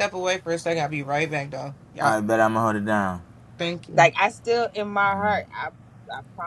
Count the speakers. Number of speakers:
three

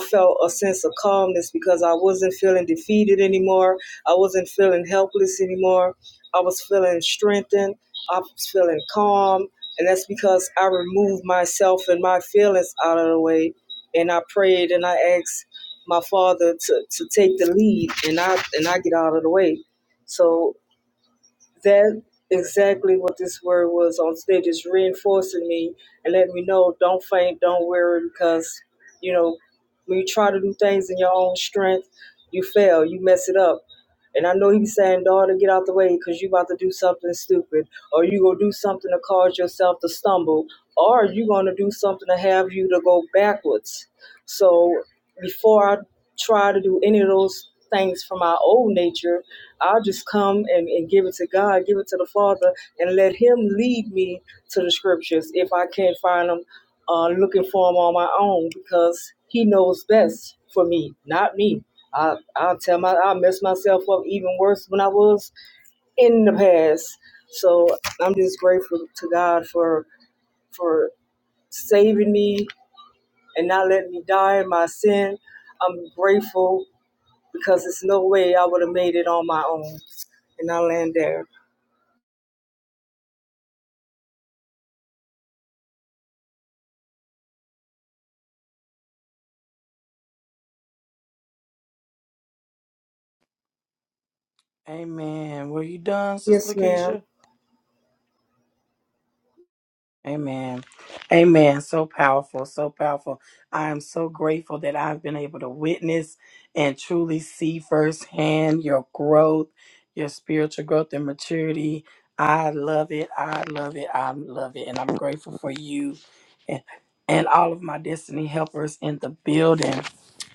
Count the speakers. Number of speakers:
two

